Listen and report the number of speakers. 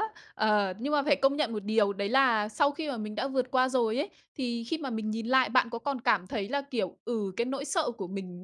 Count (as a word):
one